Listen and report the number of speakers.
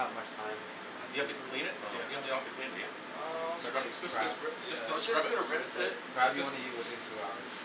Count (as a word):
three